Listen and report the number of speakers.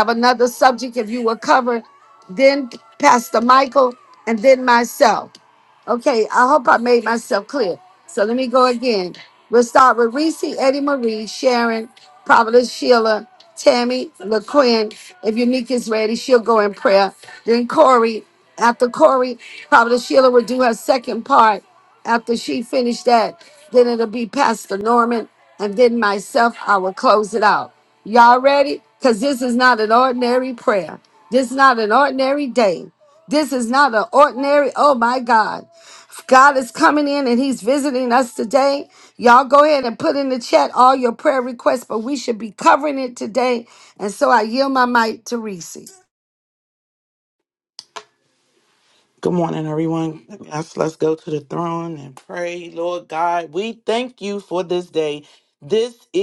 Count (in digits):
2